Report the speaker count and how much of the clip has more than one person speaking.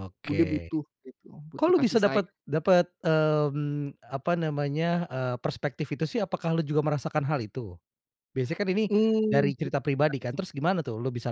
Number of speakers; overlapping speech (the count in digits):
2, about 12%